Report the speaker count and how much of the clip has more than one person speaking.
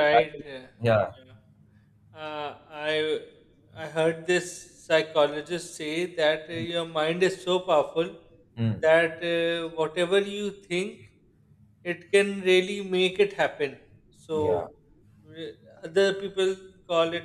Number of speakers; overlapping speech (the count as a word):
two, about 5%